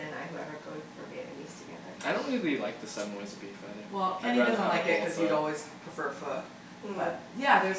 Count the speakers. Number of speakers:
3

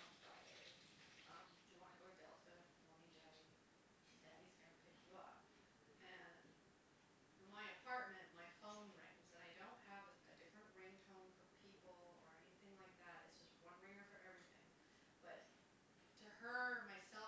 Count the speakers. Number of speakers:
1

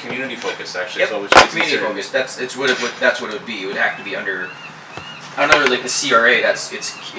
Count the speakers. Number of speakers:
2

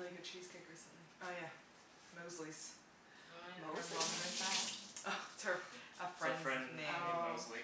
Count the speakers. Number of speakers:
3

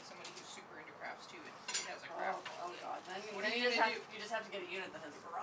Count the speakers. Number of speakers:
2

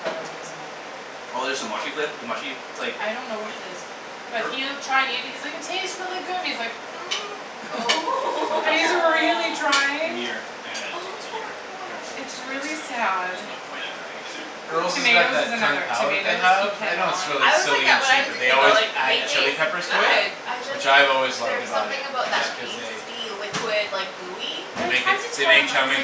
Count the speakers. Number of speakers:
4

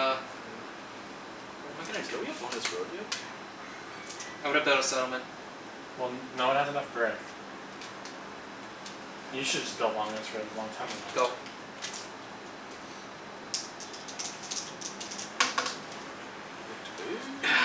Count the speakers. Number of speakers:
3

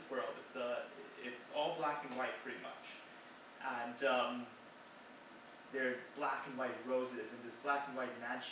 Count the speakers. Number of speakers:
1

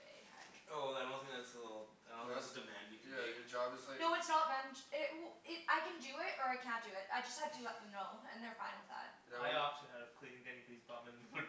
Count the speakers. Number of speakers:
4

